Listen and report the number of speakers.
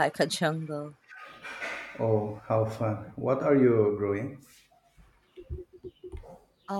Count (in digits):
2